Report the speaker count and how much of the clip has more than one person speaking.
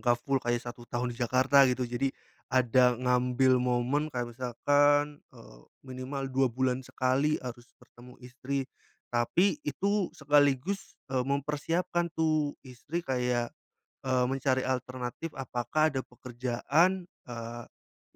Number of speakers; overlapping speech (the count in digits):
1, no overlap